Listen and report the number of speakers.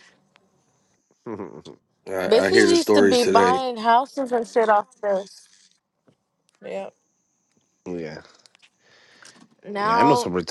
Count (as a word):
three